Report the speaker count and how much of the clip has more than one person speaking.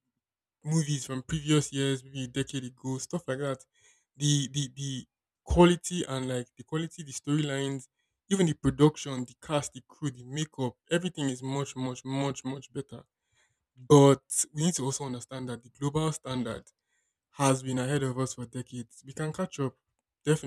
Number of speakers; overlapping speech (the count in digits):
1, no overlap